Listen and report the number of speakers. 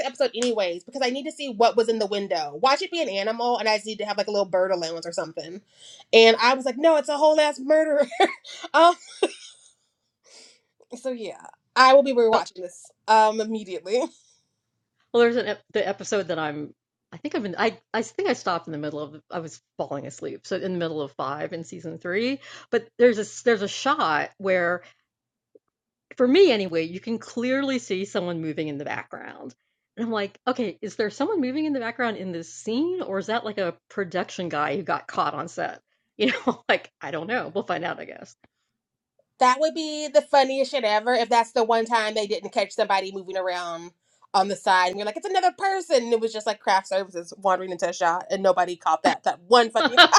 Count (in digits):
2